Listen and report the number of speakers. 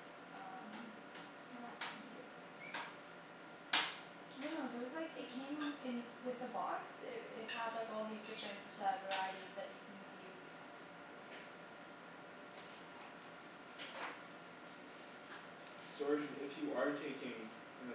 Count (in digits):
2